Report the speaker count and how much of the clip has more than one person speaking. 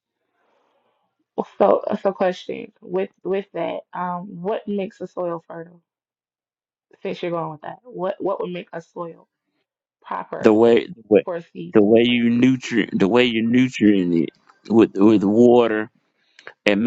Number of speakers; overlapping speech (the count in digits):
2, about 5%